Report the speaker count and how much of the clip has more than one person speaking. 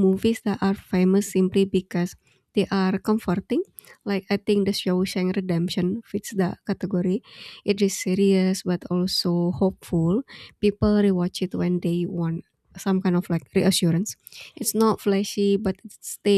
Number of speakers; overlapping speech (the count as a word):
one, no overlap